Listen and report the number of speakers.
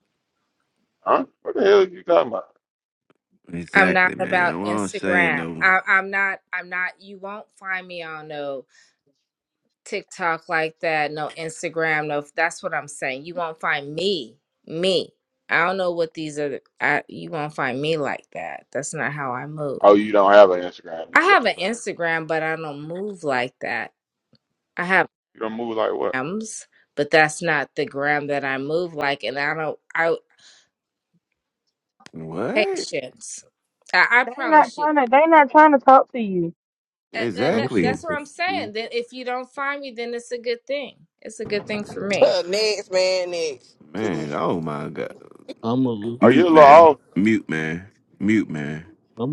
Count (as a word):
six